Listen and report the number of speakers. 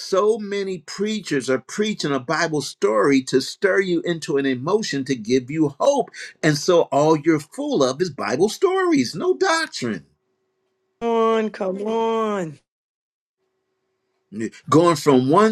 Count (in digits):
2